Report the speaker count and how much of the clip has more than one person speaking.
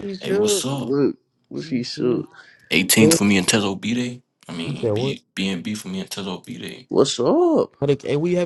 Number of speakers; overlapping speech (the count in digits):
3, about 21%